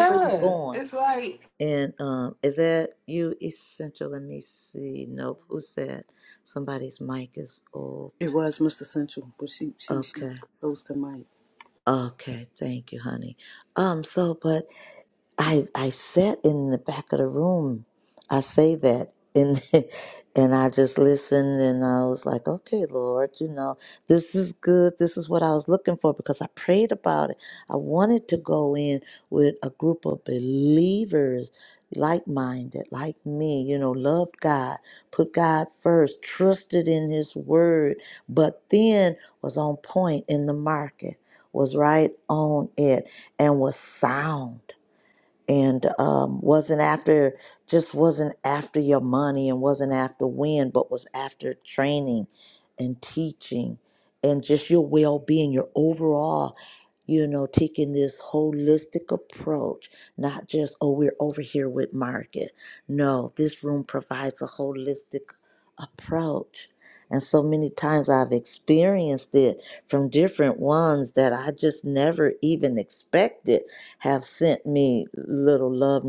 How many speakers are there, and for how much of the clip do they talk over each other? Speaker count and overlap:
3, about 2%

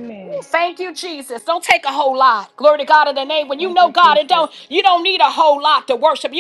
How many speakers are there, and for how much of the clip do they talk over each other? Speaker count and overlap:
2, about 14%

